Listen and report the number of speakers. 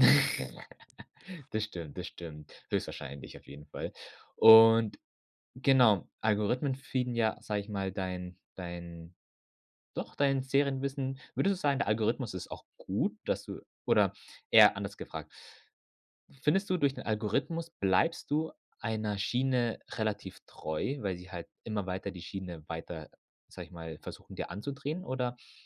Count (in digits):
1